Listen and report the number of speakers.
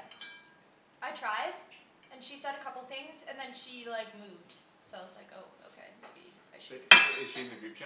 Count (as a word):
two